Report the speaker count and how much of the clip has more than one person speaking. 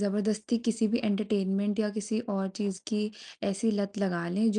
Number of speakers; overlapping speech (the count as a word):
one, no overlap